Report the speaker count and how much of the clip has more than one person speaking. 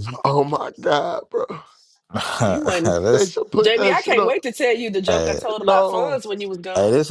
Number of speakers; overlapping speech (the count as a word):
three, about 26%